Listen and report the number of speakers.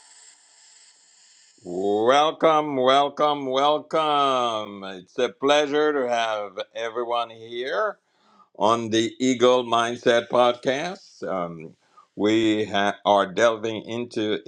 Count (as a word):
one